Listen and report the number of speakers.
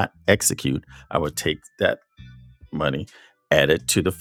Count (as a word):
one